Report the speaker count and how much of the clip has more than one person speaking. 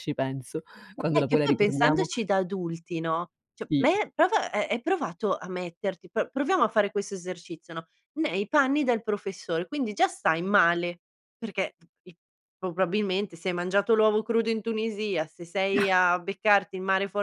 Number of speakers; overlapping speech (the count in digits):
2, about 6%